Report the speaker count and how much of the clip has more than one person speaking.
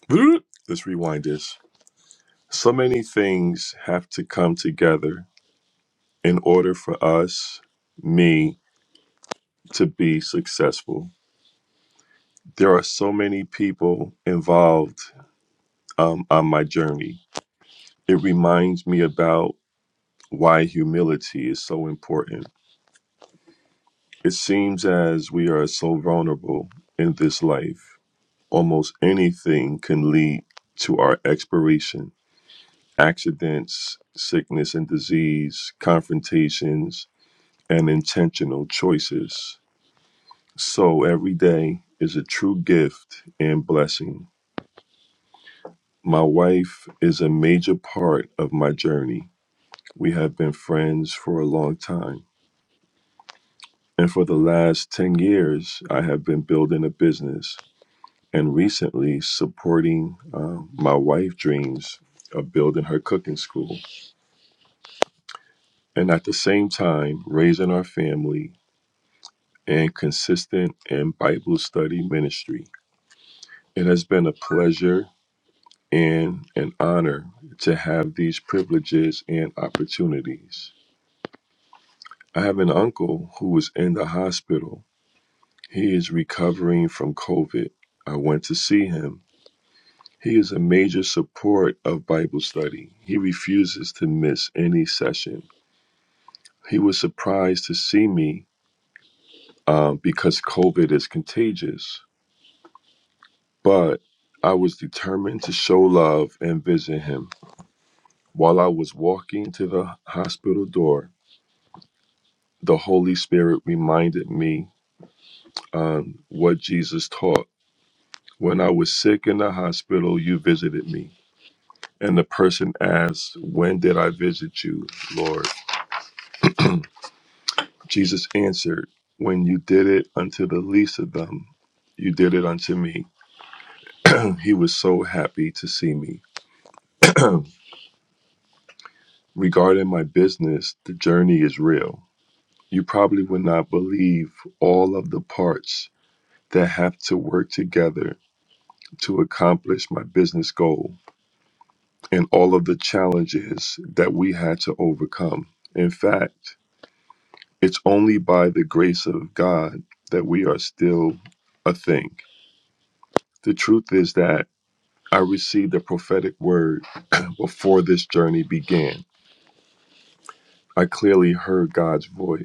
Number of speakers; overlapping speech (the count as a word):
one, no overlap